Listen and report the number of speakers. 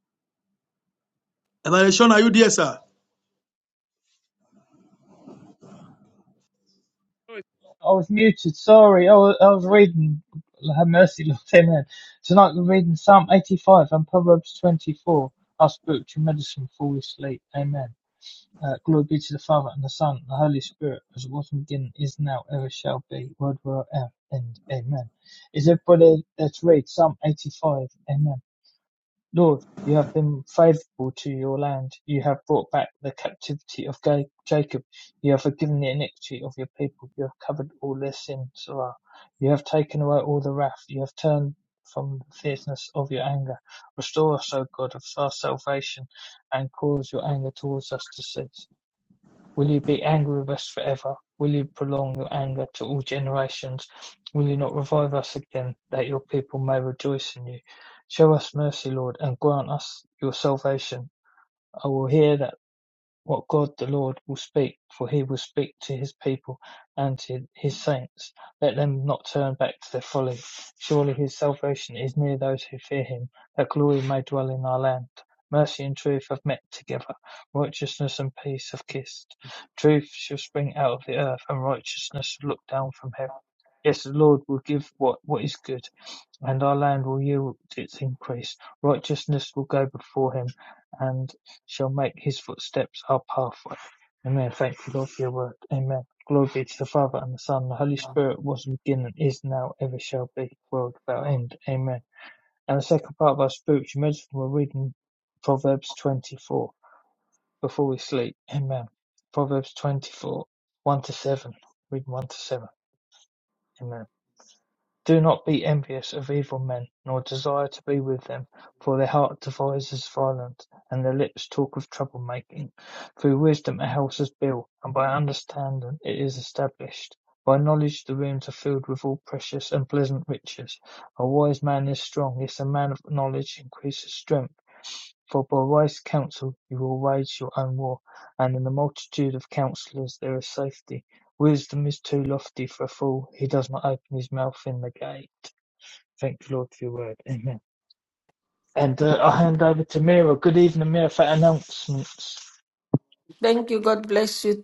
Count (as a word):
three